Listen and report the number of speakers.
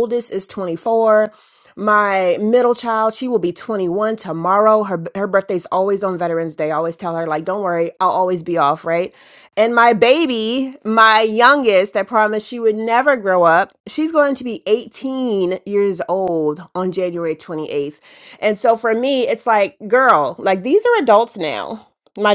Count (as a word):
one